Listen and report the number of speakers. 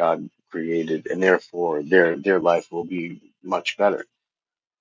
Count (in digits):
1